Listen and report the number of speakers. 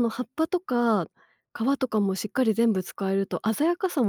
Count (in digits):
1